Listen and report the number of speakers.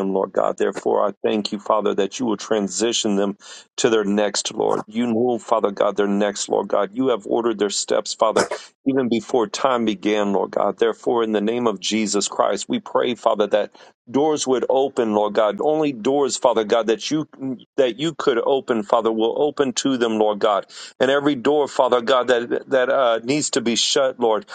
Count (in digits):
1